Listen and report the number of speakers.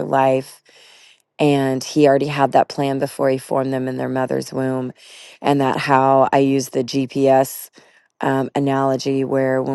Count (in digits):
1